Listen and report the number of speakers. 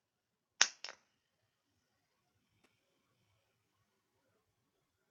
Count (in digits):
0